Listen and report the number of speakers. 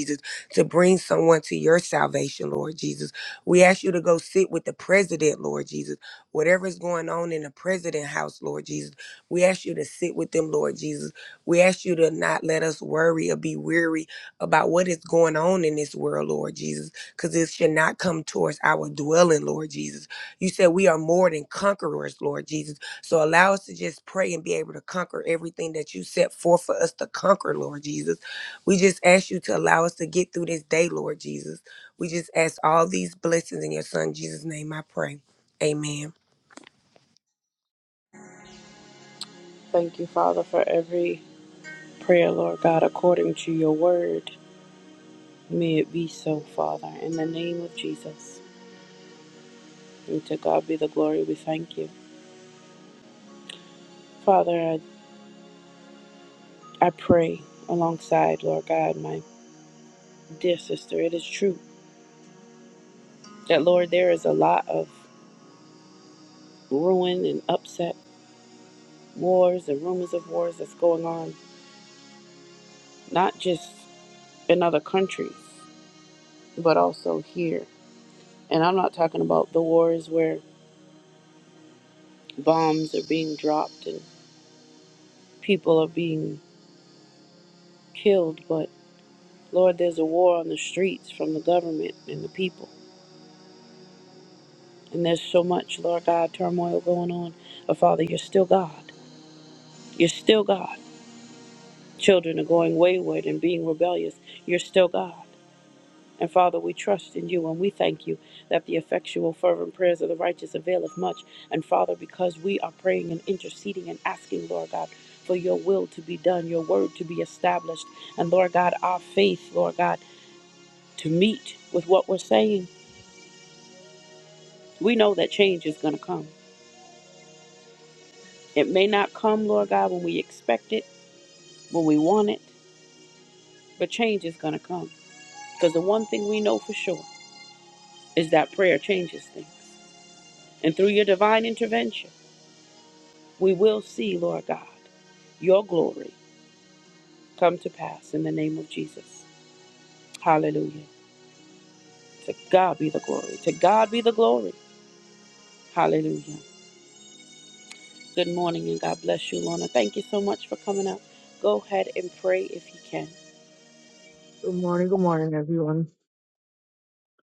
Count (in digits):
3